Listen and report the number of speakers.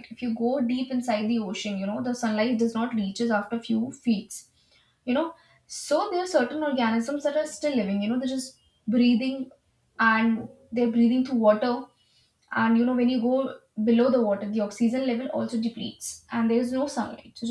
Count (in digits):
1